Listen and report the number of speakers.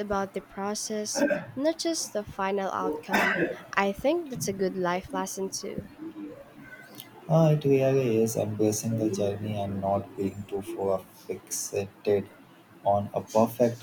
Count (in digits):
2